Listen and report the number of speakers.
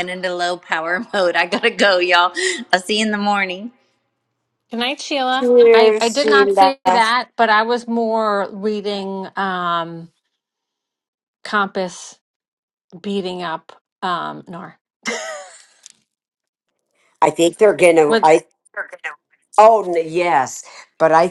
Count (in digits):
3